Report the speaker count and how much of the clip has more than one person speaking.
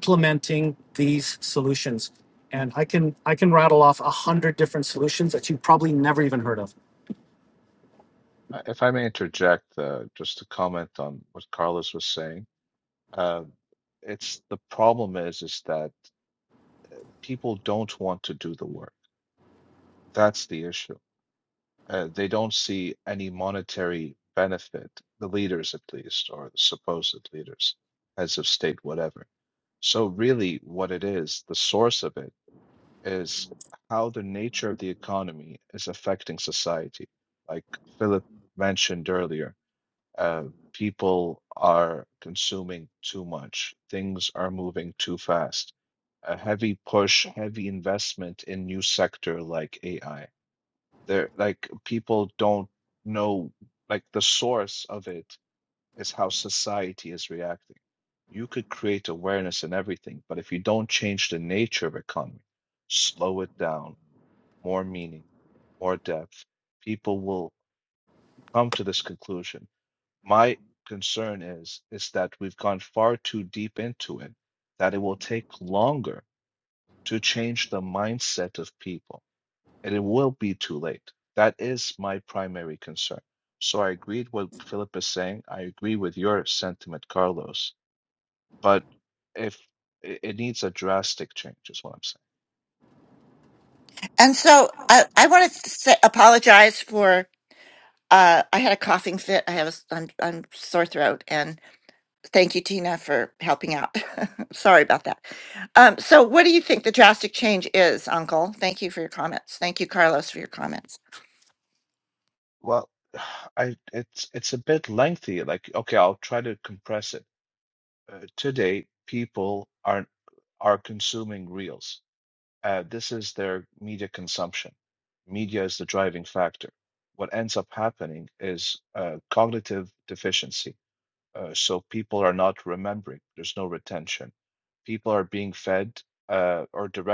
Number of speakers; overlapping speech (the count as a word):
three, no overlap